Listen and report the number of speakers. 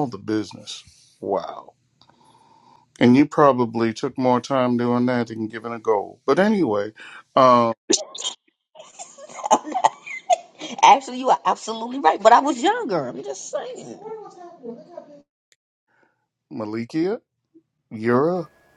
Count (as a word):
two